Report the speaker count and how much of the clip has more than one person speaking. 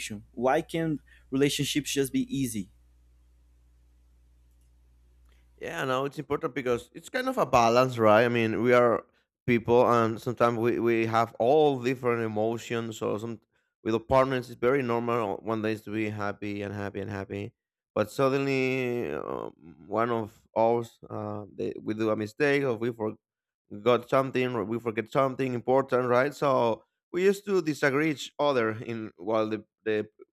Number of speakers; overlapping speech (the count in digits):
2, no overlap